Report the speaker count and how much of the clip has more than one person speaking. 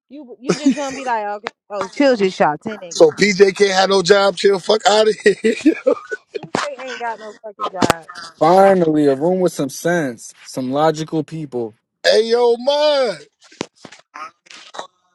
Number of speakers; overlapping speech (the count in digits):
3, no overlap